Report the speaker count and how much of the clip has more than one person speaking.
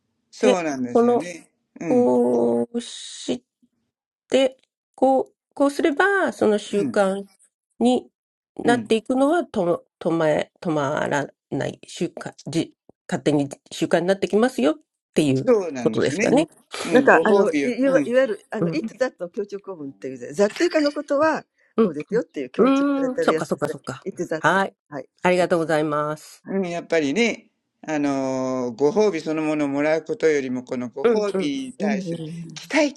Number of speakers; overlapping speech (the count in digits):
3, about 16%